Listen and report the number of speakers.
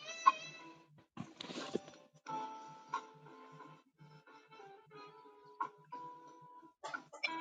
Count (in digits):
0